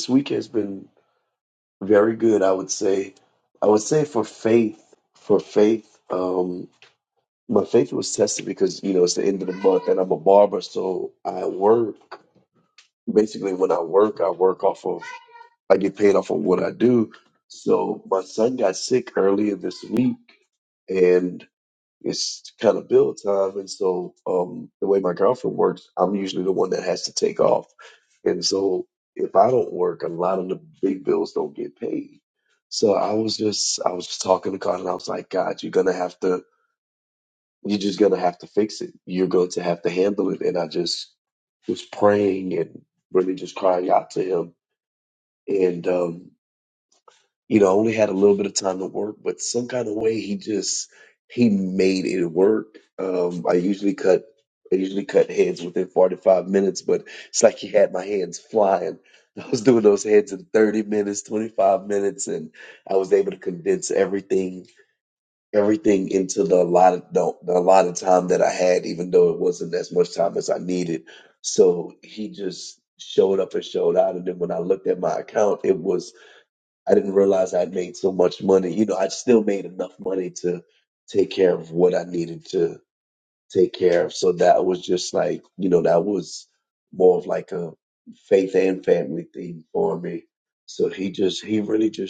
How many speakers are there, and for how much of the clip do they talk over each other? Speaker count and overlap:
1, no overlap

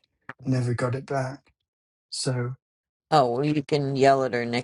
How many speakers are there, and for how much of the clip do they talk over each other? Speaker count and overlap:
2, no overlap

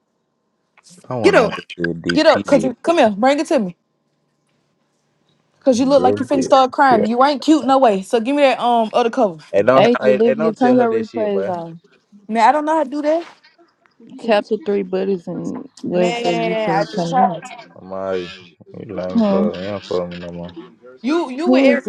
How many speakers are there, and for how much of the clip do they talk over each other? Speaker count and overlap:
3, about 28%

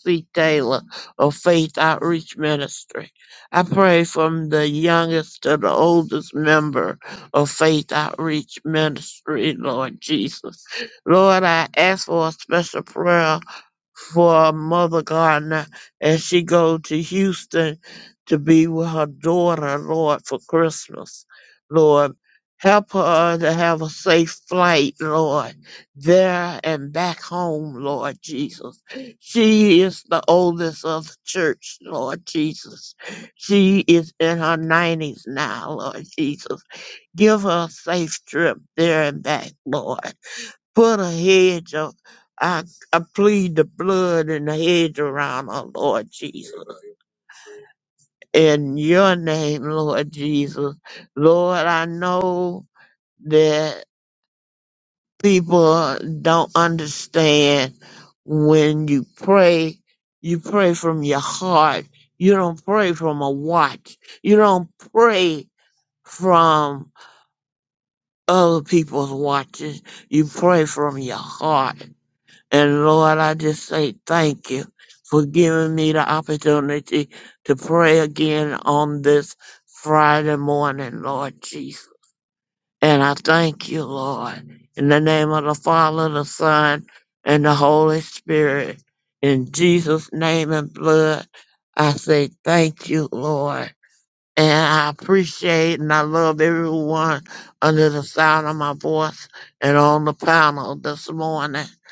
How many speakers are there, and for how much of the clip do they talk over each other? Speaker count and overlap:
1, no overlap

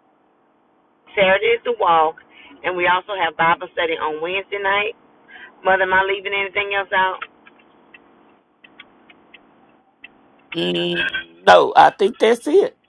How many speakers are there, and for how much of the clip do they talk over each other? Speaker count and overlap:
2, no overlap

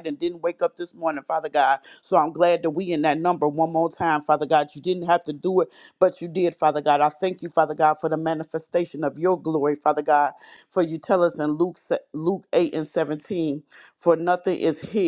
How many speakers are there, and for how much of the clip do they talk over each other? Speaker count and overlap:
1, no overlap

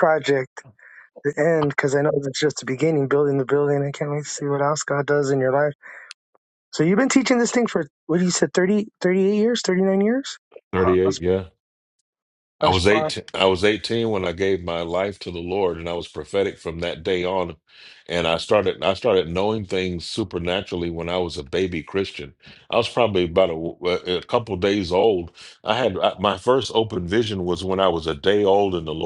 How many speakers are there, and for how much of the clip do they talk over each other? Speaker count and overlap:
2, about 3%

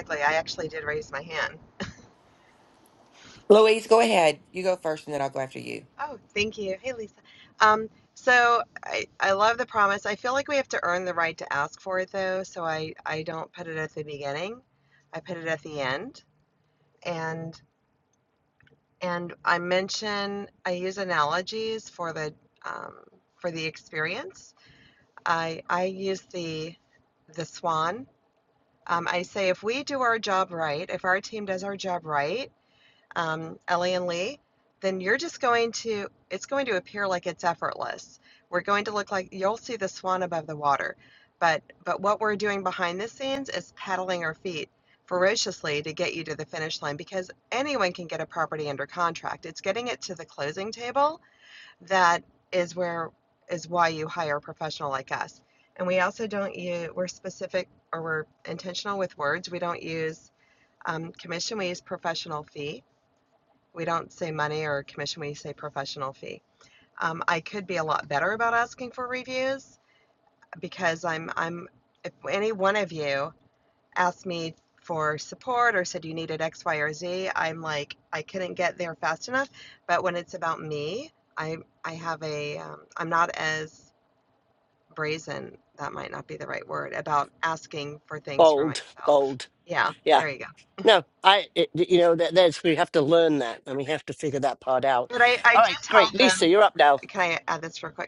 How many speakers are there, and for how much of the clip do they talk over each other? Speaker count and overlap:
3, about 2%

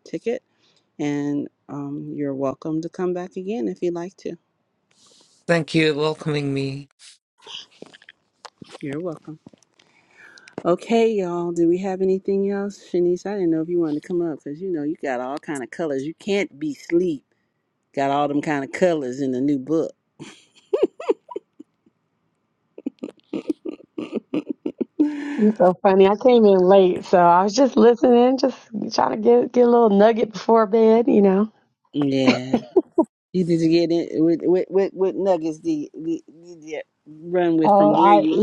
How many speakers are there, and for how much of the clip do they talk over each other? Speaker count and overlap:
3, about 2%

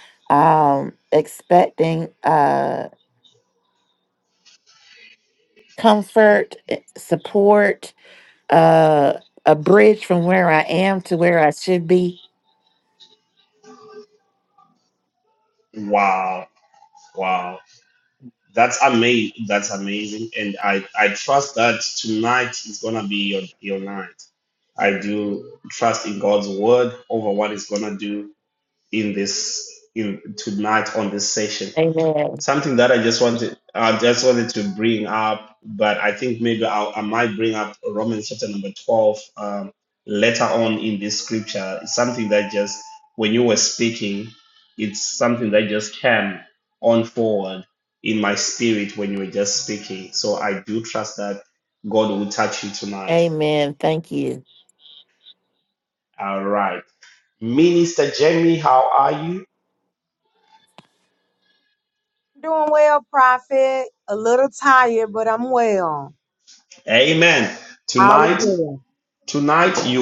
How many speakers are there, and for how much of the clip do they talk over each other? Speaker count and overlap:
3, about 1%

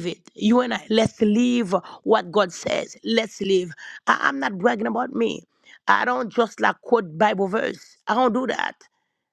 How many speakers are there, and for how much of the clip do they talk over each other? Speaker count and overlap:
1, no overlap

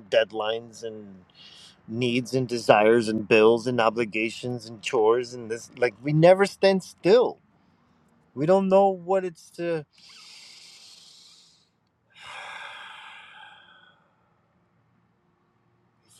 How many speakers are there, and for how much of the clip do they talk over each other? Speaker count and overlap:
1, no overlap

